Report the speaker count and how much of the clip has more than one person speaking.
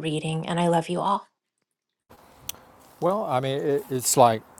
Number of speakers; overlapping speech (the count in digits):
2, no overlap